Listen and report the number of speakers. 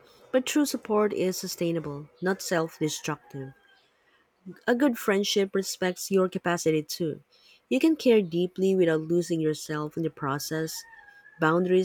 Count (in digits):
1